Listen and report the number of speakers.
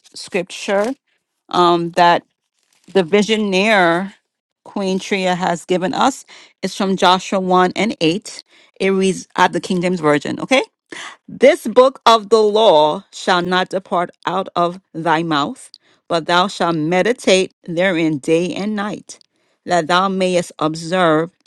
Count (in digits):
1